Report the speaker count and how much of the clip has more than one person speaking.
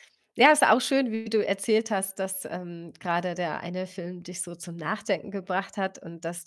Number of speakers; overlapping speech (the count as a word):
one, no overlap